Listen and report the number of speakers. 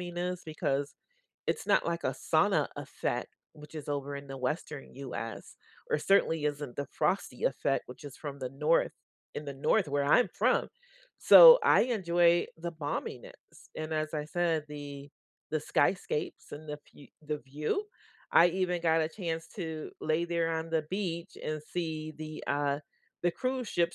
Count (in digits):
1